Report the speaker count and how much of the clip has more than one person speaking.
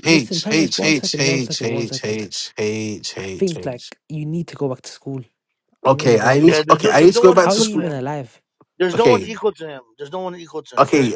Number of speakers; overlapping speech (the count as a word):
three, about 48%